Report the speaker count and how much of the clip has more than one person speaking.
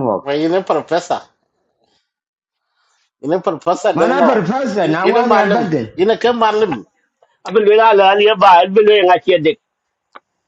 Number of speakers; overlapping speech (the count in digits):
3, about 16%